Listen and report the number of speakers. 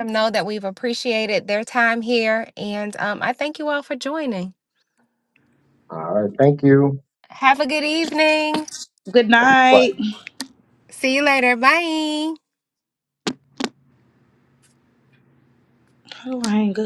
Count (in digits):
3